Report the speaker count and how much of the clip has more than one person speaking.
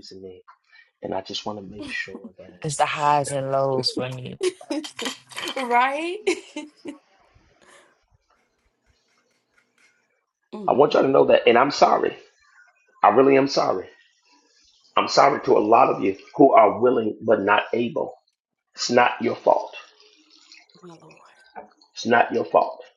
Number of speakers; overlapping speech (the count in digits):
3, about 2%